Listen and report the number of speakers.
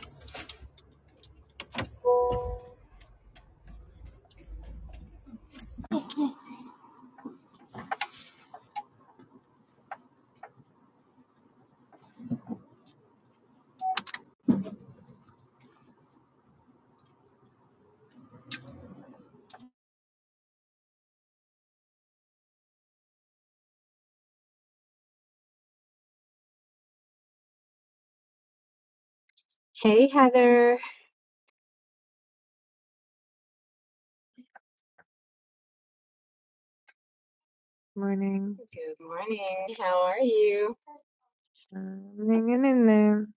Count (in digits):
2